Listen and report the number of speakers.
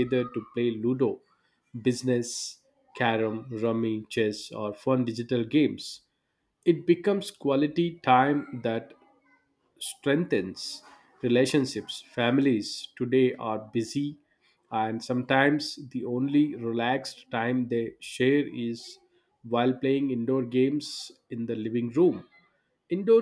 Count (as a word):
one